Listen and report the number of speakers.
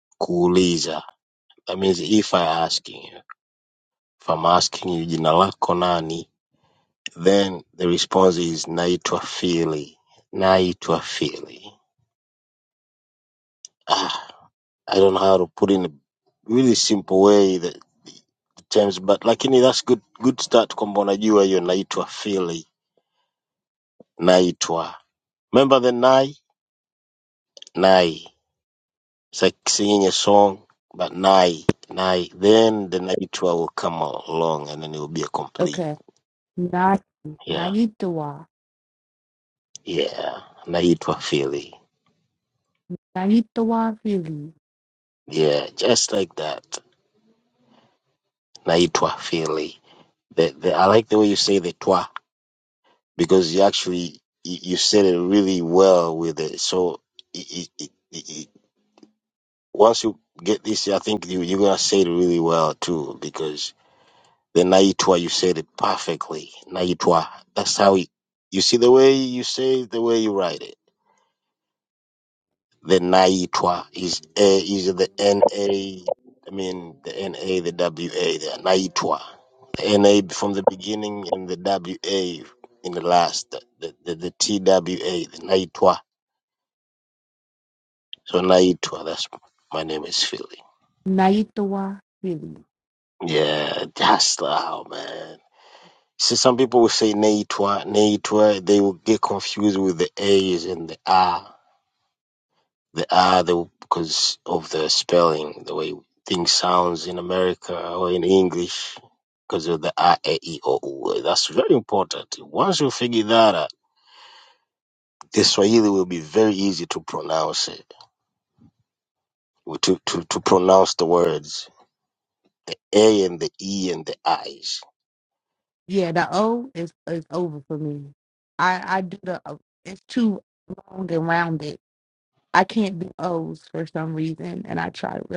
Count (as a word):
two